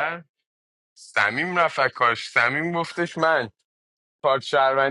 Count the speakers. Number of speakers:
1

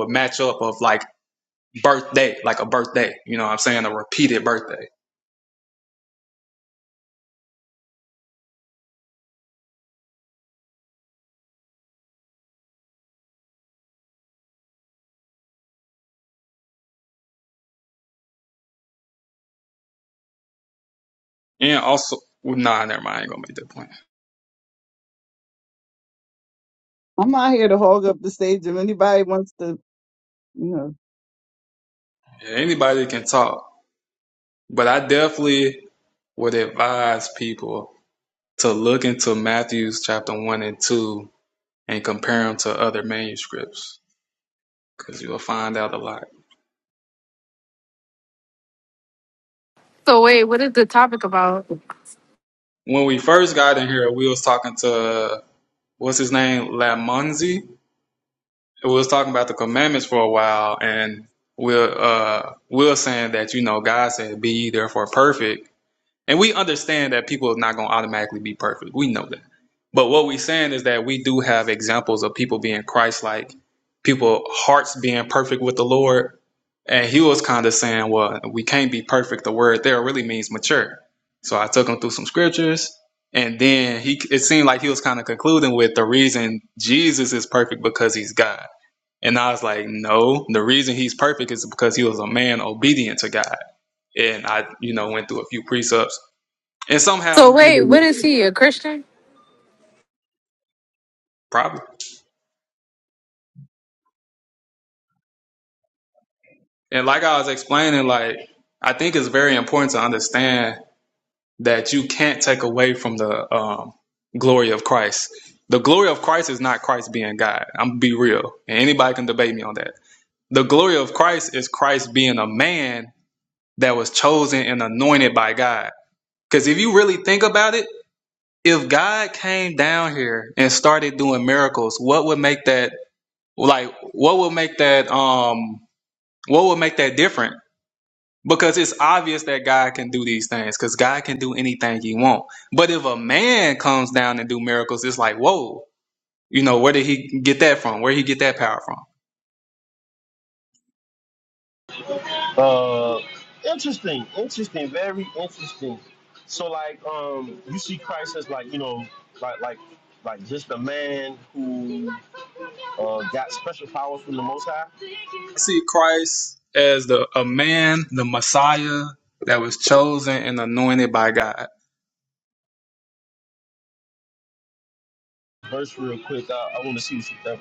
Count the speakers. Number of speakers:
4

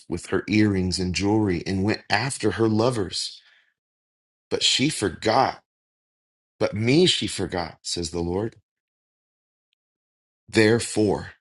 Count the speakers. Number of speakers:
1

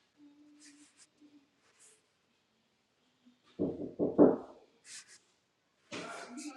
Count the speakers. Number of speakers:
0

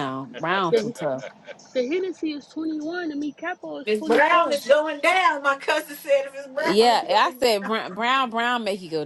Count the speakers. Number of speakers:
3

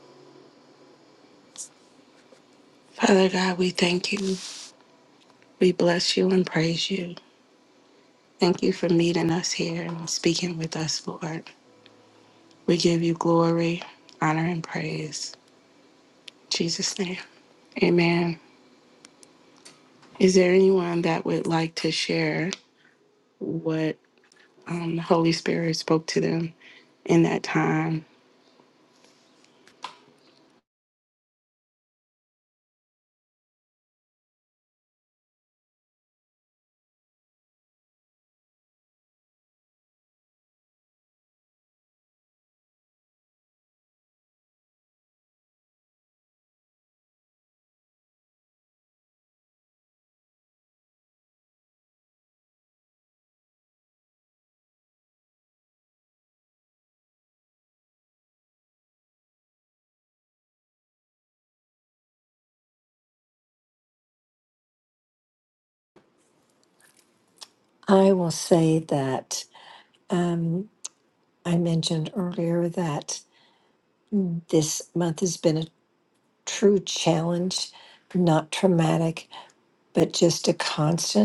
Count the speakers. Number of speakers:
2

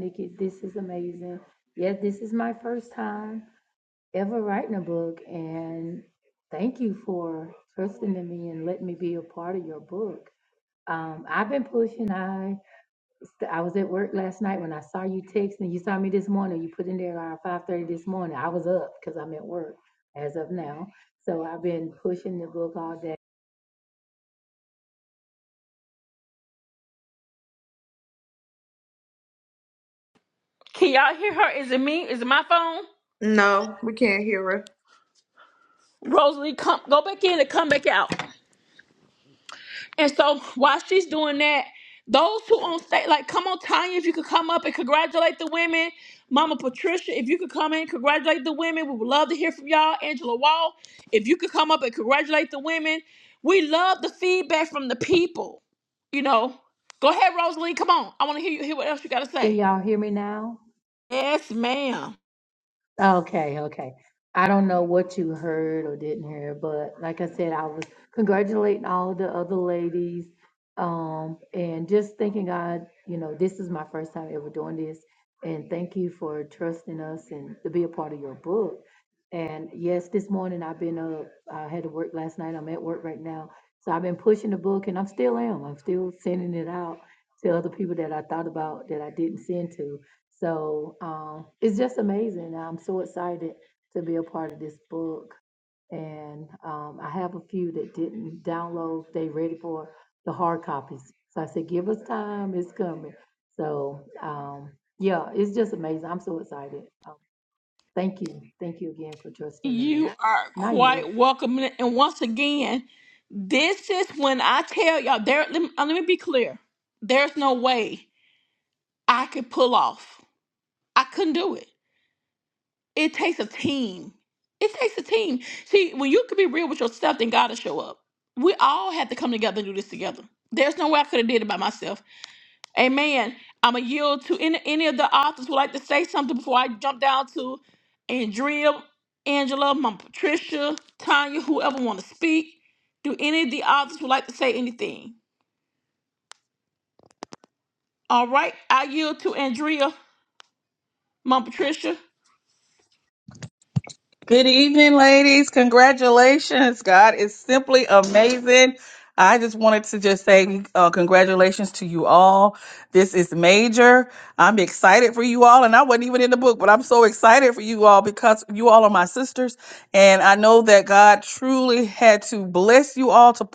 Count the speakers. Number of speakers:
4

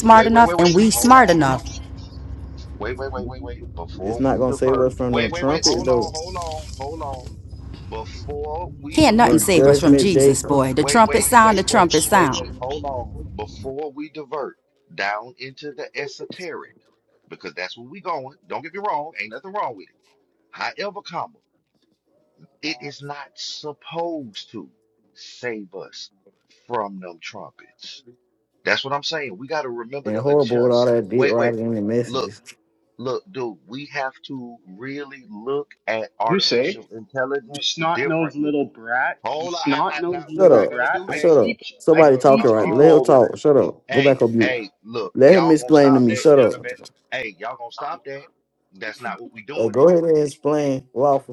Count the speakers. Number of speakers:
4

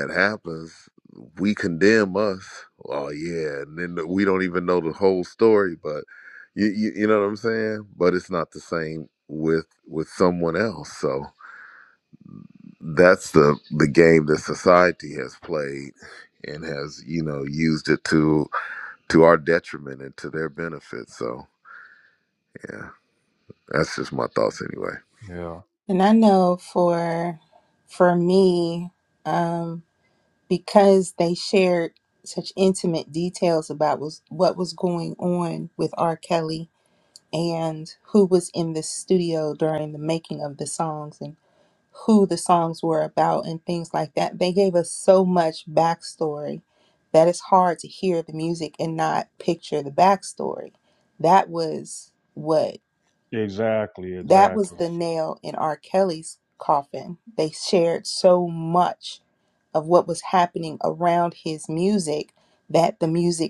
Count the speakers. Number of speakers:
3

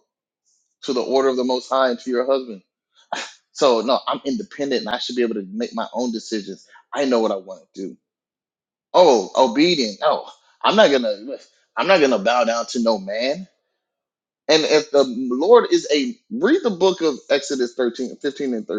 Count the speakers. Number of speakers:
1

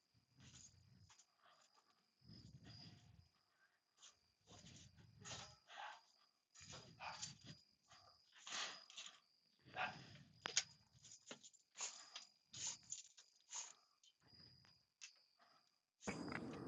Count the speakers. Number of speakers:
0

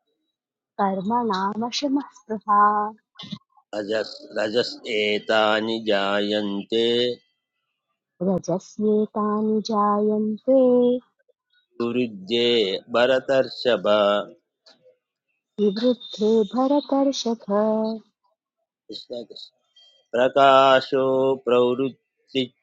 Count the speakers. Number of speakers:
2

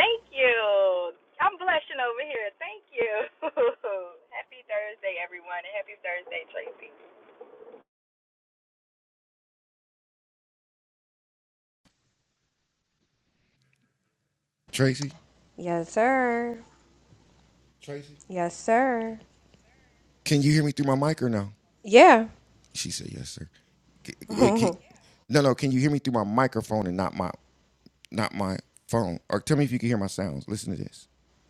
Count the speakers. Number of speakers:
3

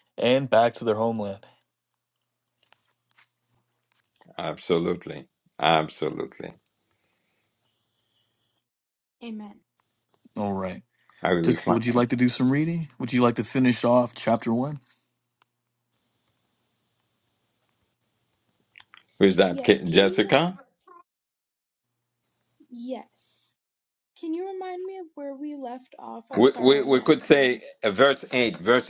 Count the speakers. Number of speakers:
3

